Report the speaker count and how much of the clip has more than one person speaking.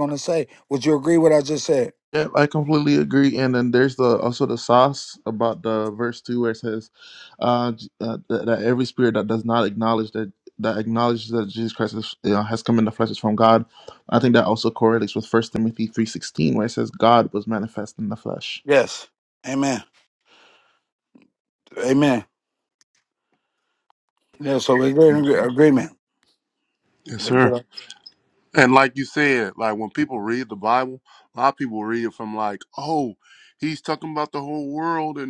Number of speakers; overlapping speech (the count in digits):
3, about 1%